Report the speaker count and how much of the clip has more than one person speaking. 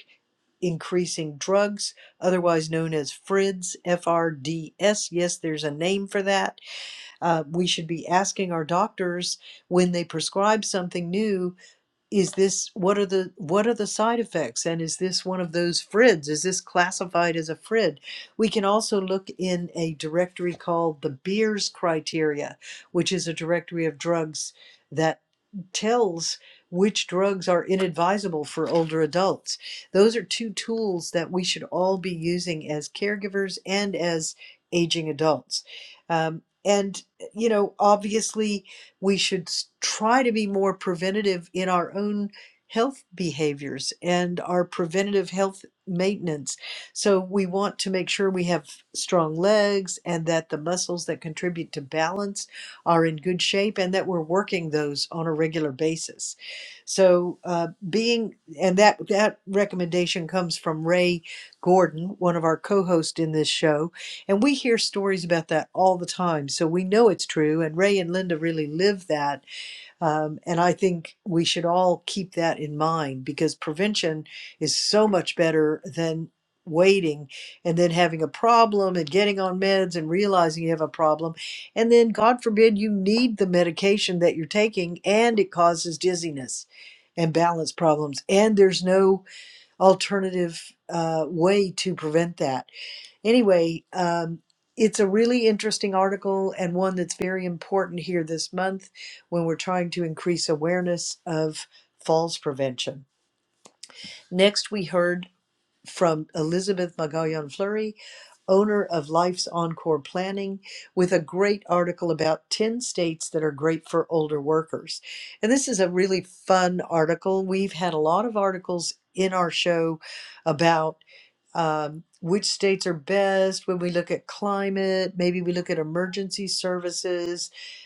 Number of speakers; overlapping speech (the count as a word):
one, no overlap